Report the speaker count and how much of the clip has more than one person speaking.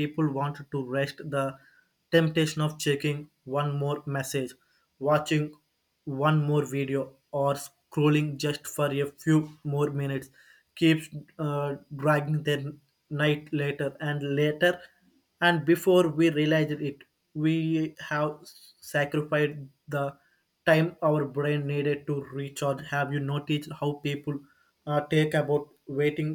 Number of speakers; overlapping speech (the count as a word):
one, no overlap